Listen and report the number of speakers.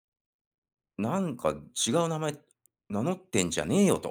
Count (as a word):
one